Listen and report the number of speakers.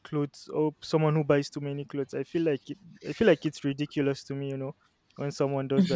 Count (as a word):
one